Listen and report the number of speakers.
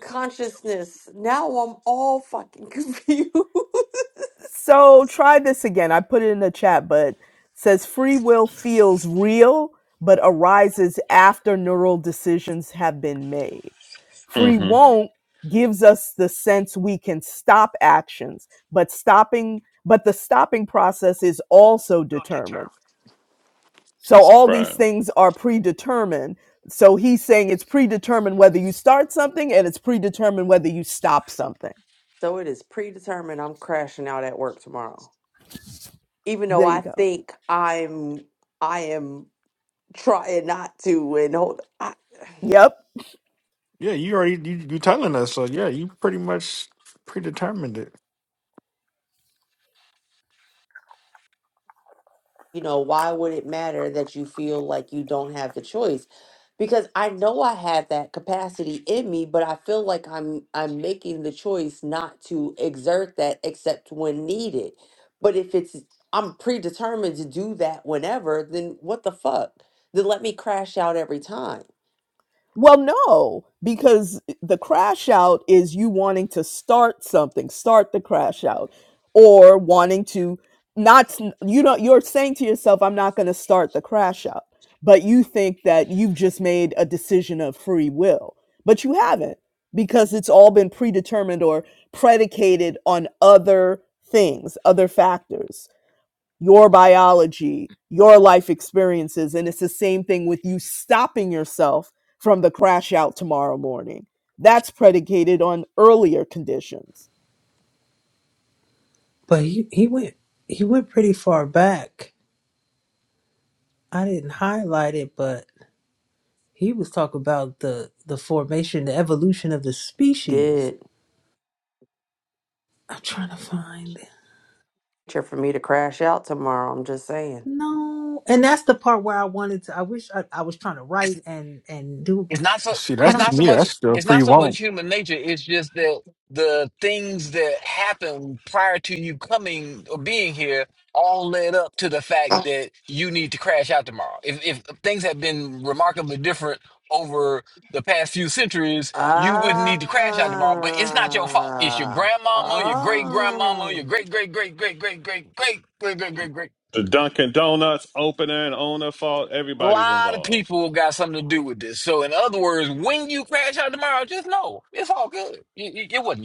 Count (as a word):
six